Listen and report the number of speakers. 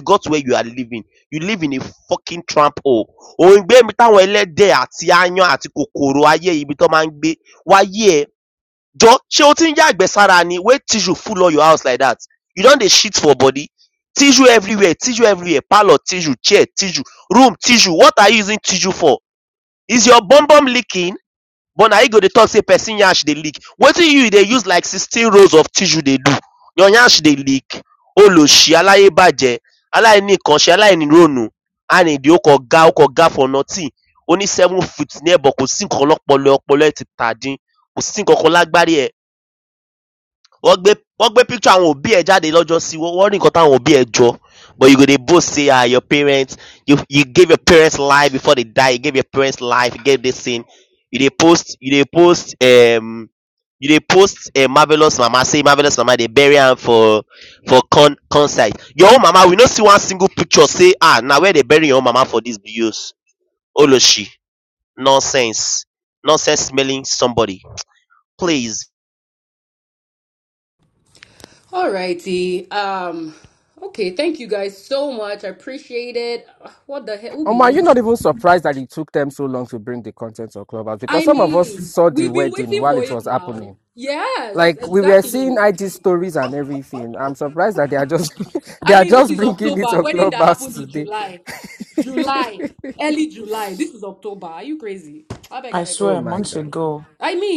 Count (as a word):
four